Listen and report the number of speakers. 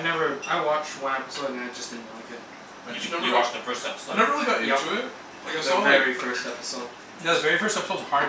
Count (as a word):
four